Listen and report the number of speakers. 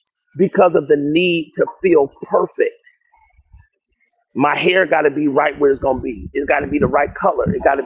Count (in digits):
1